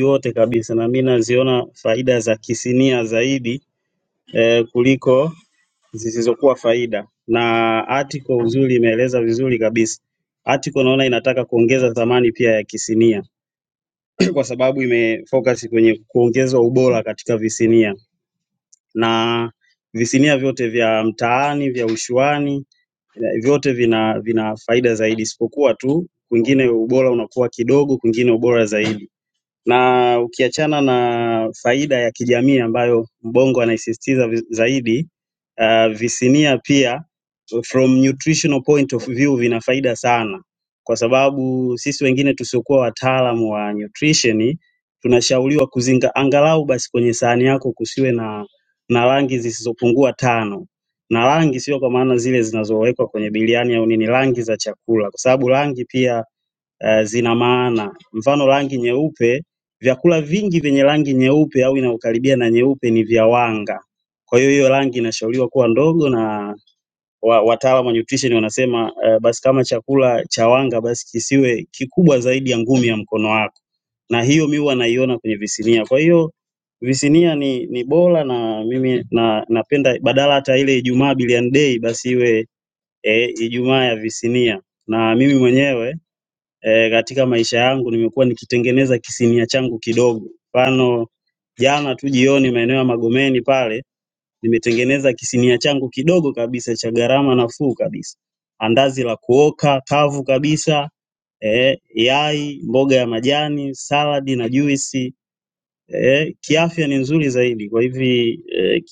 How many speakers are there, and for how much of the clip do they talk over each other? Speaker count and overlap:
1, no overlap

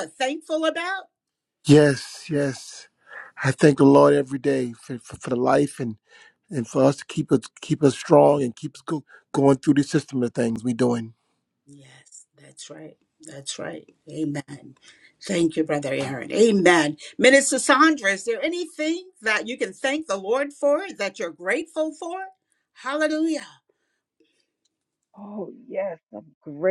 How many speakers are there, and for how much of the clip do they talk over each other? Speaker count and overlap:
3, no overlap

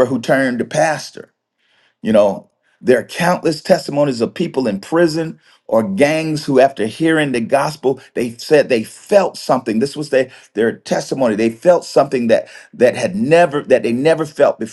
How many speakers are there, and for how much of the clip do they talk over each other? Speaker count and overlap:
1, no overlap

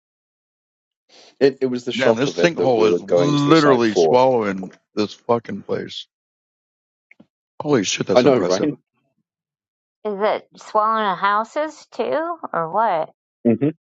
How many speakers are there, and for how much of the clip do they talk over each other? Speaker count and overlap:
3, about 20%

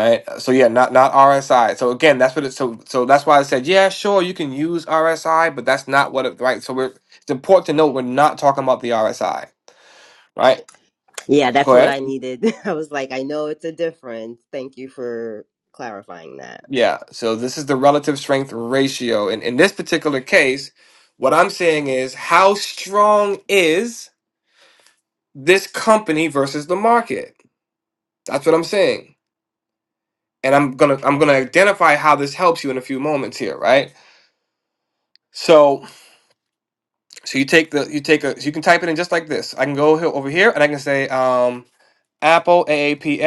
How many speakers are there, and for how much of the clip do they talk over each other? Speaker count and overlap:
2, about 1%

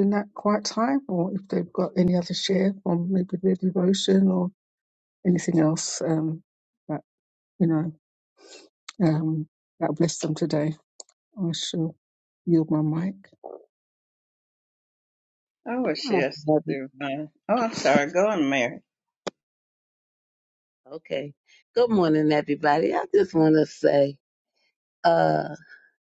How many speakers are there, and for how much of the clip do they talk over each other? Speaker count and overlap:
3, about 1%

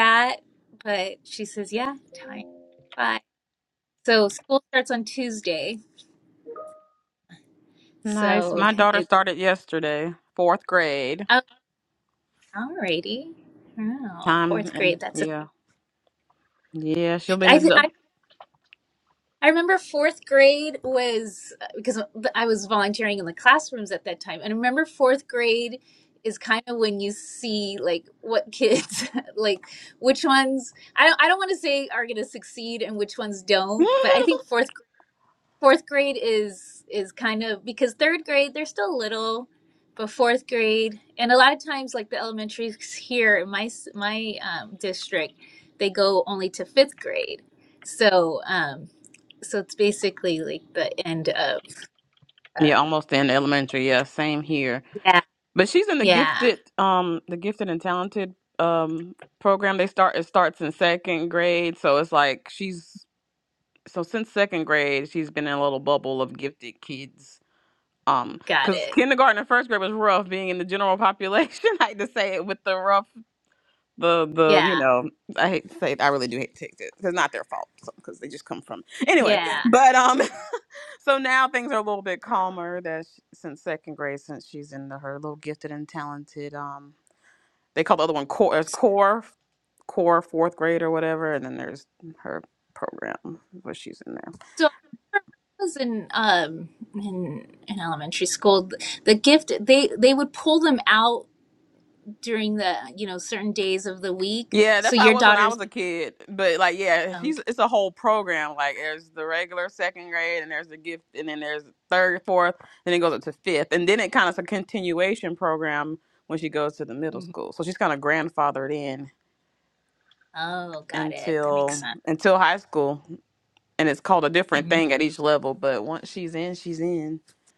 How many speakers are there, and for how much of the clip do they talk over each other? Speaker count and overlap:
2, about 6%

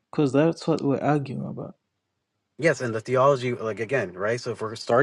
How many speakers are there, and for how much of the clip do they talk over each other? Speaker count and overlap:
2, no overlap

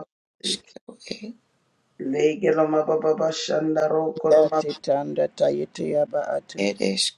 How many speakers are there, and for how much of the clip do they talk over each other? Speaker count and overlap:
3, about 7%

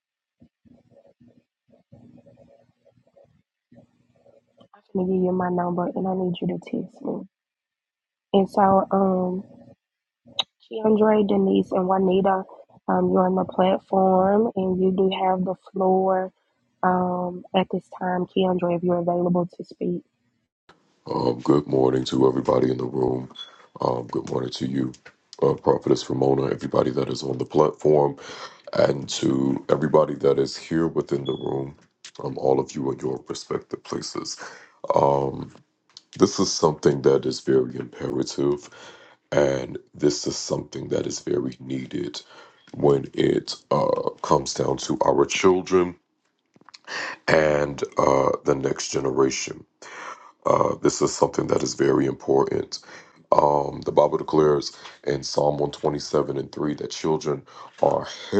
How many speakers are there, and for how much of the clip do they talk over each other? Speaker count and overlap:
2, no overlap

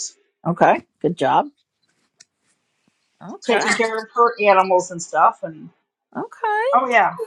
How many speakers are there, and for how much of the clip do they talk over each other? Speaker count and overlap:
2, about 2%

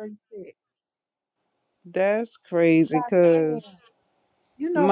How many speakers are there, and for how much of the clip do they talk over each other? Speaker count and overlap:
2, about 17%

